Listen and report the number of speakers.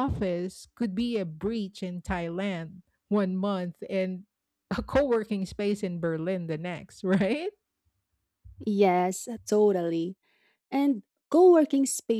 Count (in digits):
2